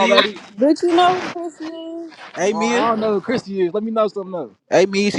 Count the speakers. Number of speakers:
3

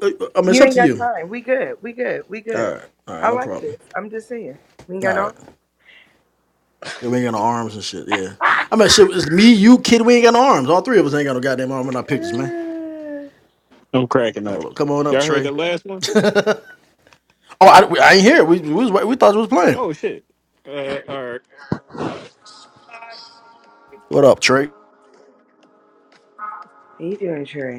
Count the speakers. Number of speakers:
3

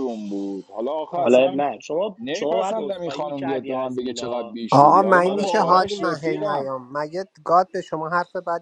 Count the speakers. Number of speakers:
3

